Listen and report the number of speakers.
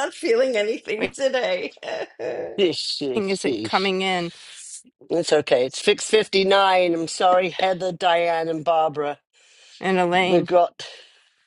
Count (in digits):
3